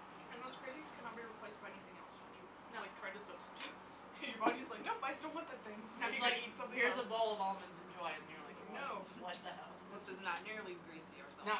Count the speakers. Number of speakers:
3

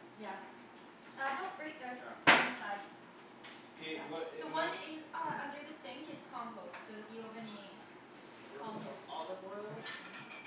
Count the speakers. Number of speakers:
3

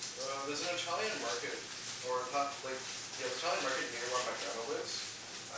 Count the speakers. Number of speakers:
1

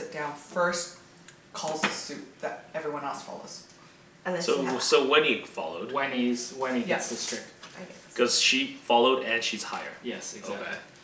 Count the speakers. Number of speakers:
3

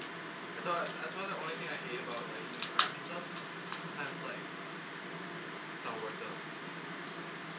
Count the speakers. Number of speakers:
1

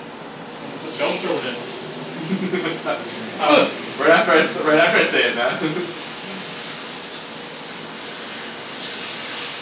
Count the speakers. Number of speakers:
2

